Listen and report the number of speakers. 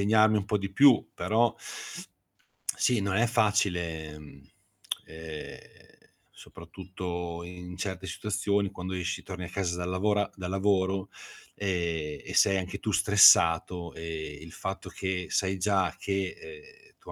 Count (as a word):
one